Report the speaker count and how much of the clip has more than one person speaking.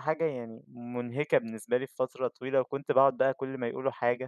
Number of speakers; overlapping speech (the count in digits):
1, no overlap